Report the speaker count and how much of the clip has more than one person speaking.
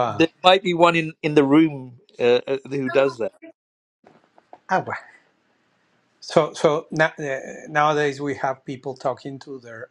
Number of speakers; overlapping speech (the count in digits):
2, about 1%